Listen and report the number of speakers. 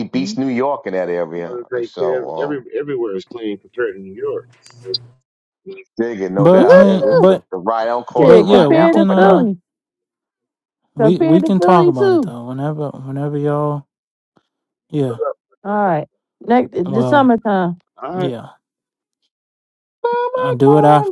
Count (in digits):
4